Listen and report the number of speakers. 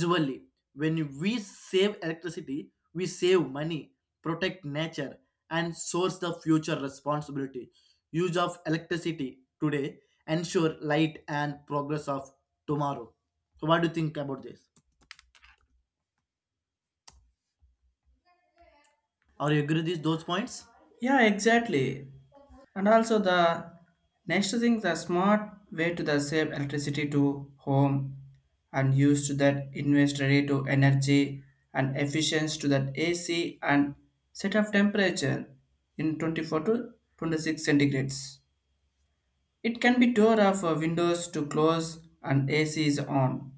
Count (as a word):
two